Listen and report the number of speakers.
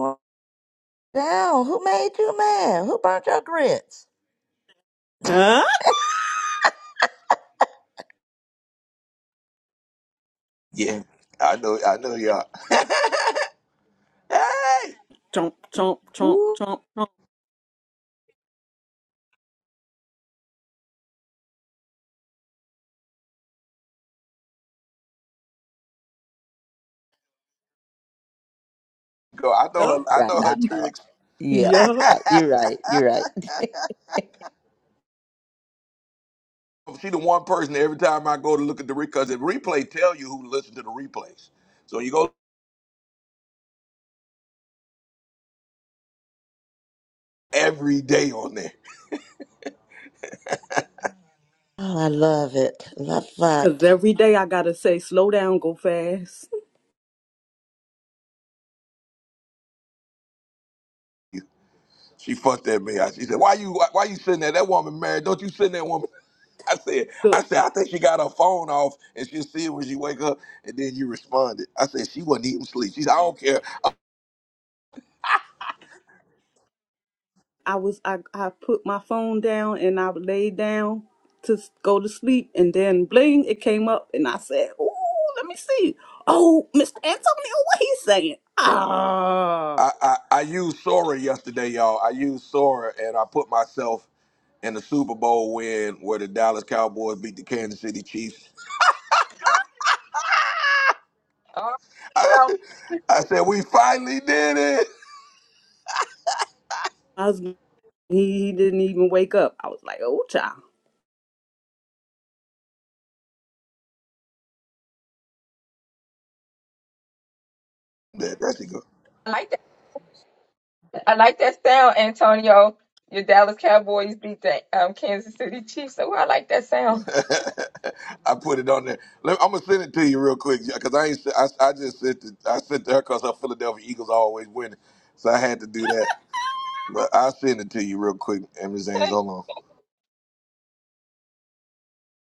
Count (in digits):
4